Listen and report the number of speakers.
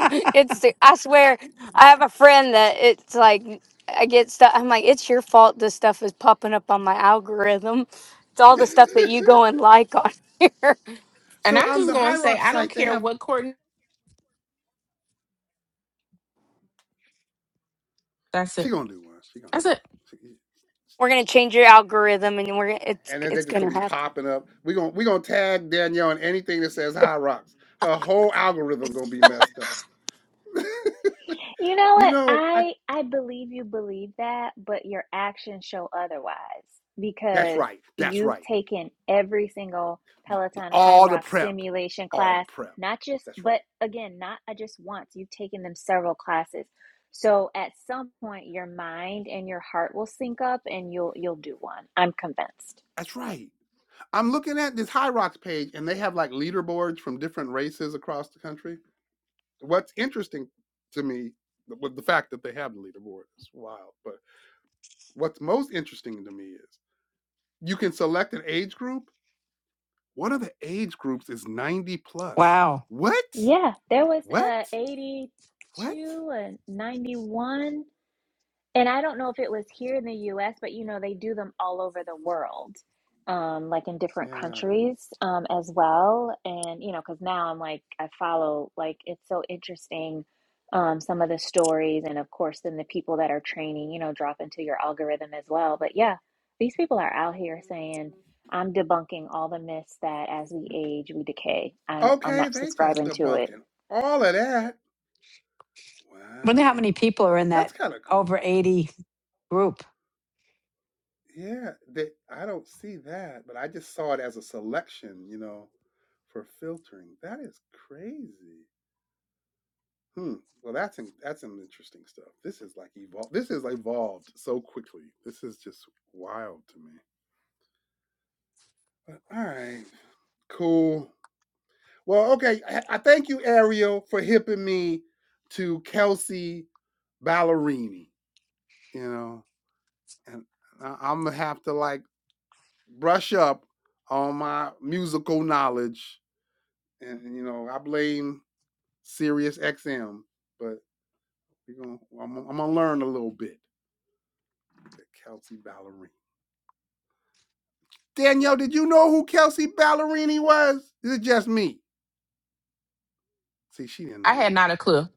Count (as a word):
five